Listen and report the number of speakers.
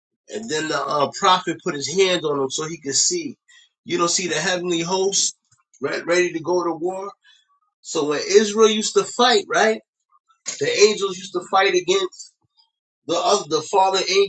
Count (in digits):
1